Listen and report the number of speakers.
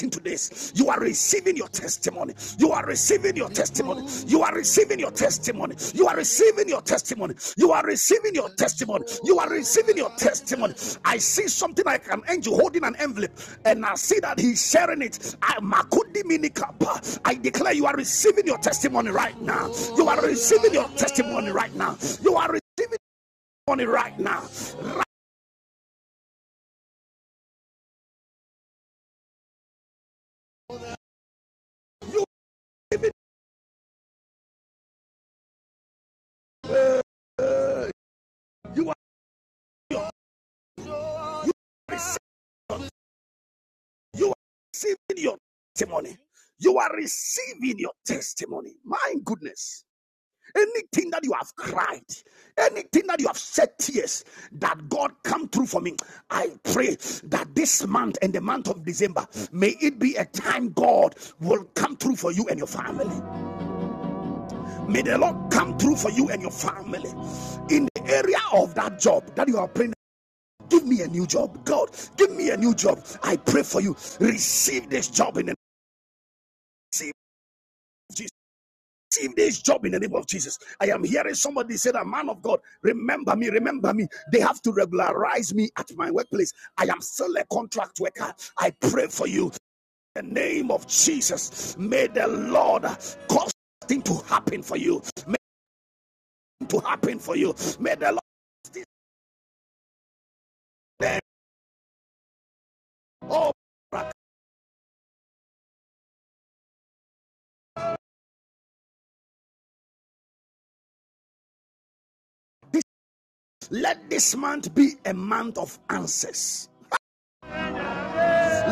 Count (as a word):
one